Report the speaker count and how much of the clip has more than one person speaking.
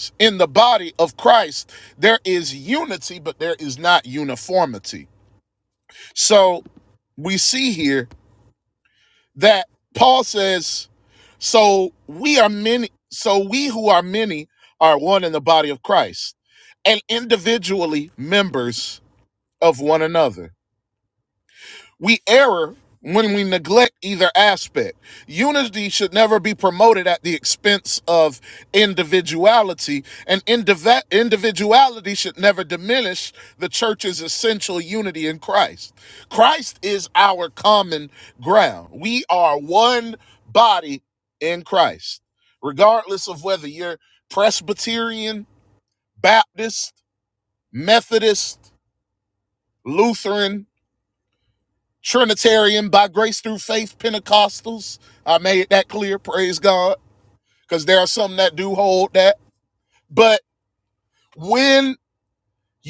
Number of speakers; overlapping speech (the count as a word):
one, no overlap